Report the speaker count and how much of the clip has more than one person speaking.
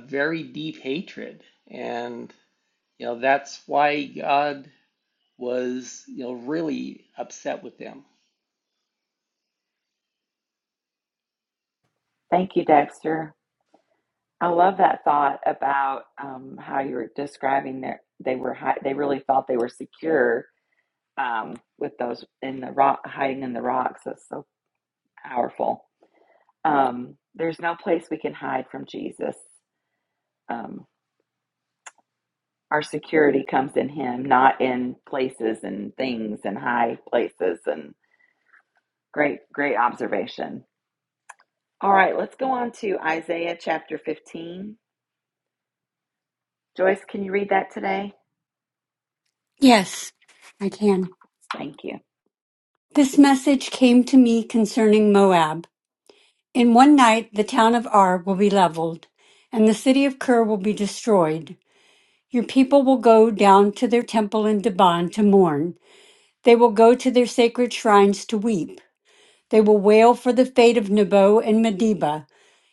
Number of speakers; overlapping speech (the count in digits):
3, no overlap